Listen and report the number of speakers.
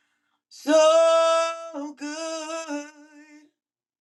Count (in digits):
1